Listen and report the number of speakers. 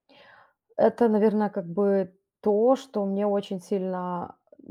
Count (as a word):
one